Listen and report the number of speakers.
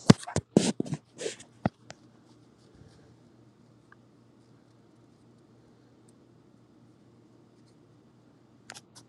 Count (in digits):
0